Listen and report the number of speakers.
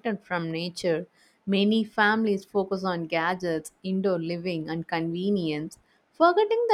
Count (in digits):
1